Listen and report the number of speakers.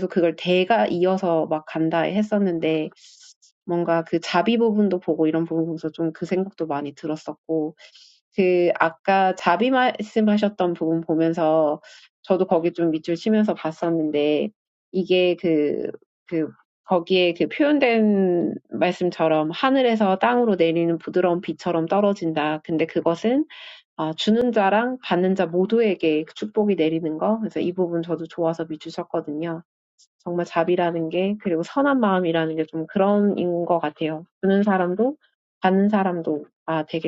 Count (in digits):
1